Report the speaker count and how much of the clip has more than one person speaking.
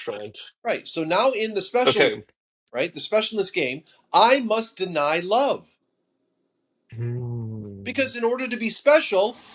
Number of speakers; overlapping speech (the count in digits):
2, about 3%